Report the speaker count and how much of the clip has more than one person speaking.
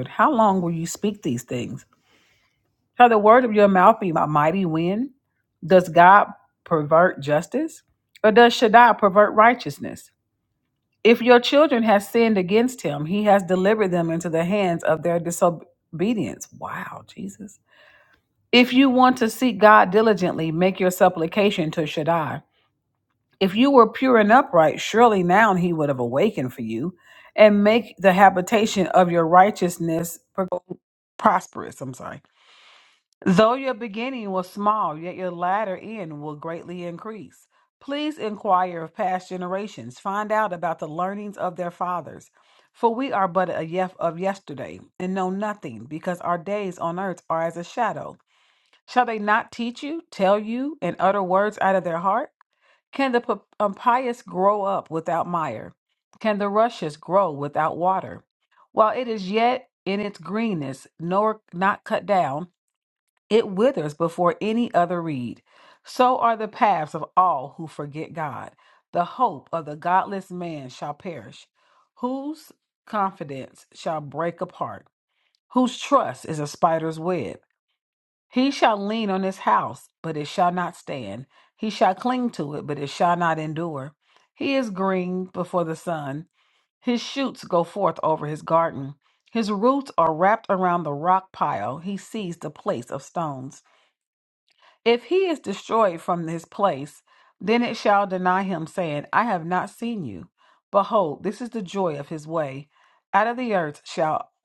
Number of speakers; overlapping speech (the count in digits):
1, no overlap